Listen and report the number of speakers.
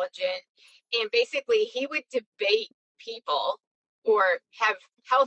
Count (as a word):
one